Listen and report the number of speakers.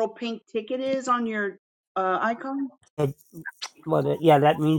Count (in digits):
2